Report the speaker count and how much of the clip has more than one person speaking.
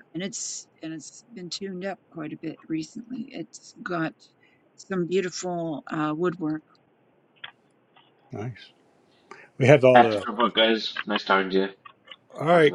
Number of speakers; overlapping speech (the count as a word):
three, about 3%